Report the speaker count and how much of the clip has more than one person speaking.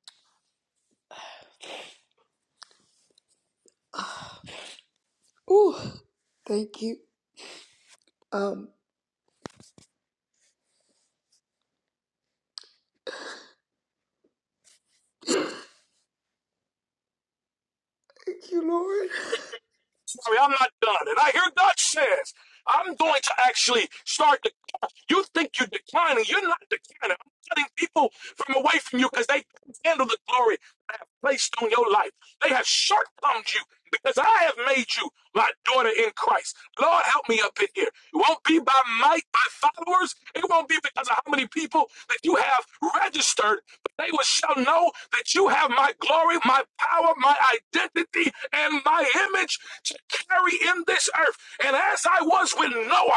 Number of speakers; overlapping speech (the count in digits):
2, no overlap